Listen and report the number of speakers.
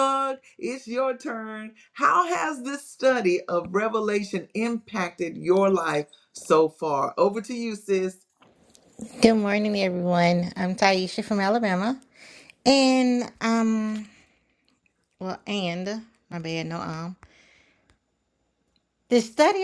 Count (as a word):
two